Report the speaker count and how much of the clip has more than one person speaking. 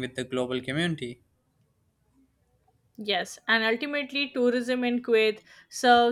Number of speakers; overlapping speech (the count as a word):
two, no overlap